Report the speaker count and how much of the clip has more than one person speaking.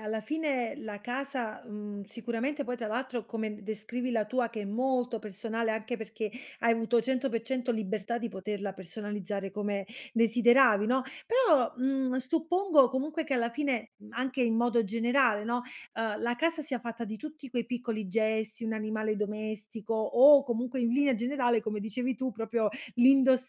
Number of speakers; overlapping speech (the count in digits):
1, no overlap